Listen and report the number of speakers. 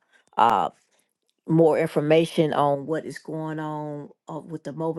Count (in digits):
1